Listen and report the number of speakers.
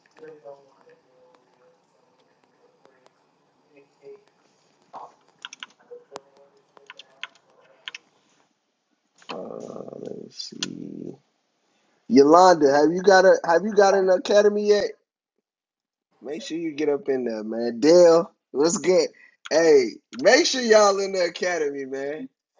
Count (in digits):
1